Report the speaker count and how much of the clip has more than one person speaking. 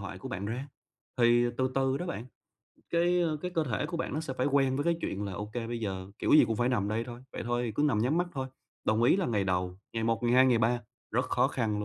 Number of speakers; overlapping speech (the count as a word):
one, no overlap